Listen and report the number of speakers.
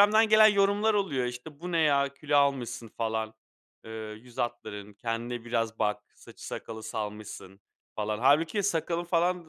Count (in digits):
1